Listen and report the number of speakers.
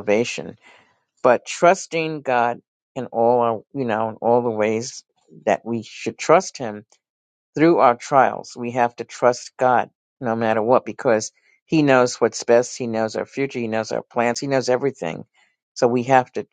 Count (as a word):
one